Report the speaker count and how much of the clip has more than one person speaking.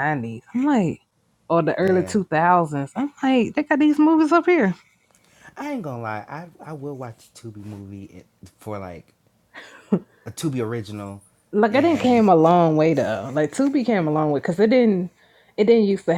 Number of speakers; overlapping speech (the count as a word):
two, about 5%